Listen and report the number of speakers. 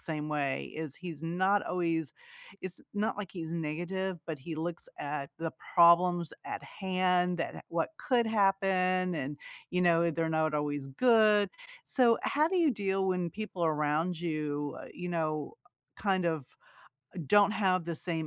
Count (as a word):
one